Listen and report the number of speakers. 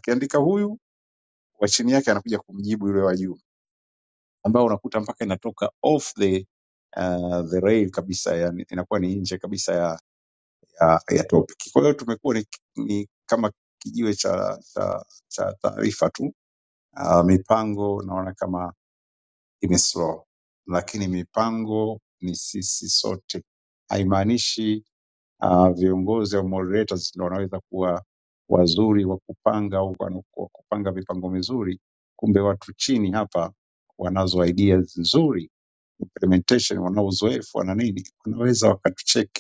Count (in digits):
1